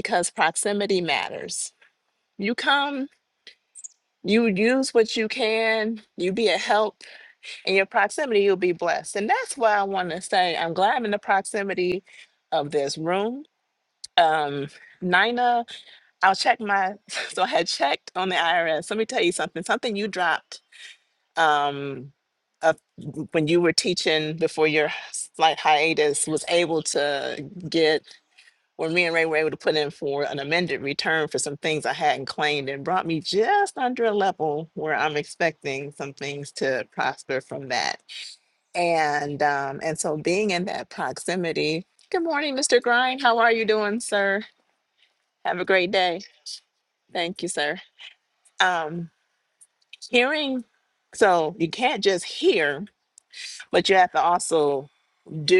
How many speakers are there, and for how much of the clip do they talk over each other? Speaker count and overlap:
1, no overlap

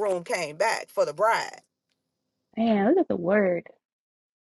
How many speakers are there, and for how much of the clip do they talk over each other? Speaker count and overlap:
2, no overlap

